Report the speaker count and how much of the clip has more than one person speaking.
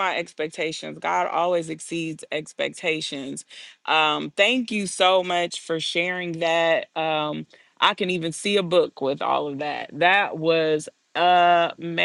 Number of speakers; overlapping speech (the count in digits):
1, no overlap